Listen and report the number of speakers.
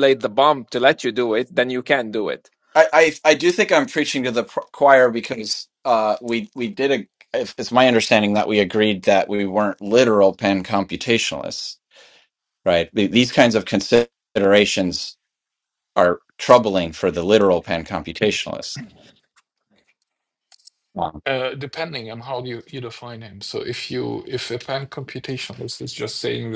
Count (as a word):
three